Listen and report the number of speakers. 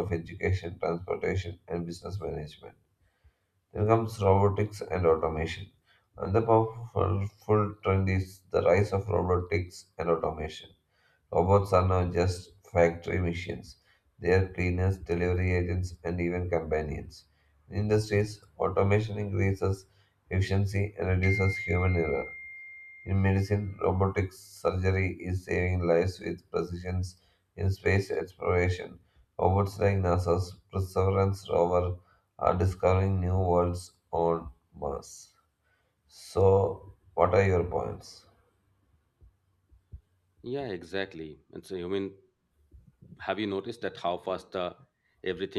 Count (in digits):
2